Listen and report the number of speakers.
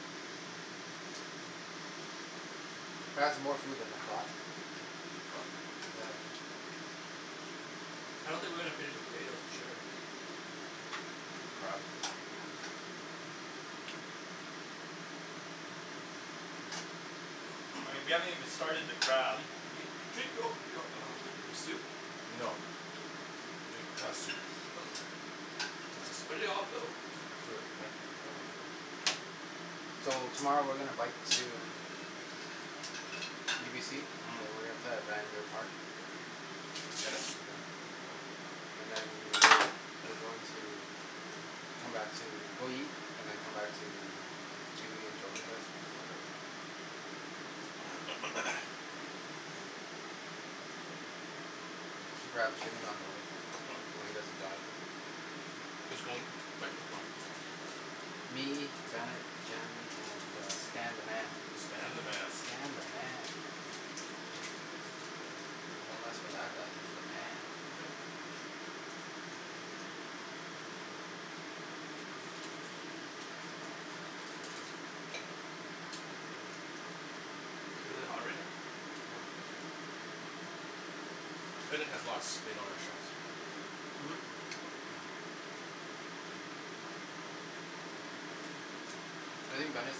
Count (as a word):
four